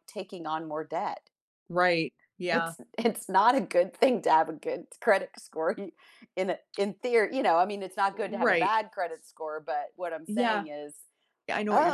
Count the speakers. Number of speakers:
two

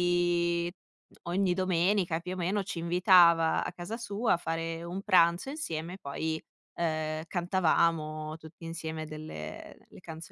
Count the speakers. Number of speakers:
one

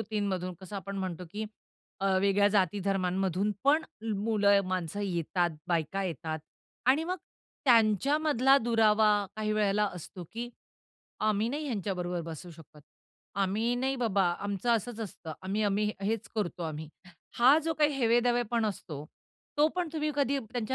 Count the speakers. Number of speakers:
one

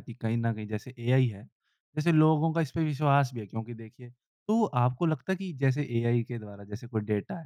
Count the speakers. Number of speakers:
one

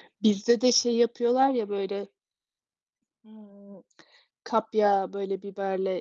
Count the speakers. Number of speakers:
one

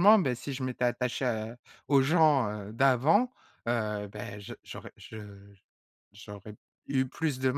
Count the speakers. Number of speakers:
one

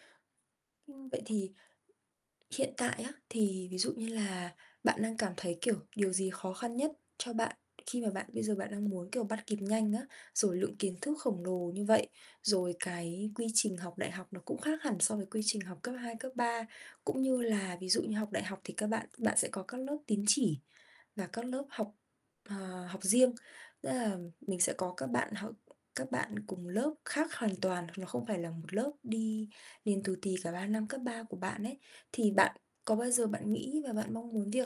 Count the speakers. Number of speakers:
one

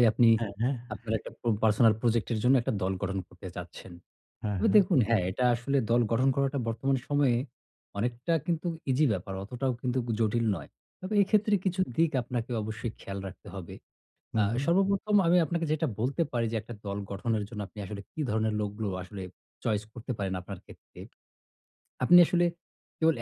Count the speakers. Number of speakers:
two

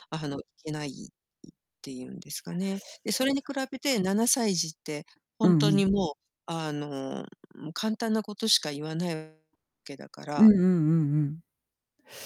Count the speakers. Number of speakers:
two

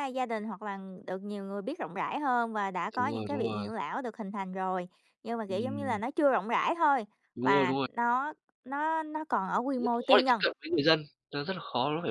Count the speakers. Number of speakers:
two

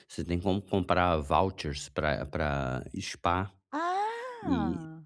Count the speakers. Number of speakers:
two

